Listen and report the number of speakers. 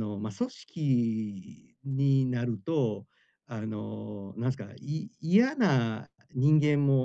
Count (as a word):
one